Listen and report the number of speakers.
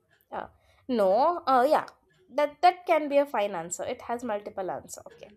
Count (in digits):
1